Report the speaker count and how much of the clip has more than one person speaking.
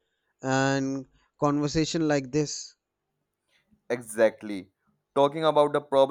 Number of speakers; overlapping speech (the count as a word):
two, no overlap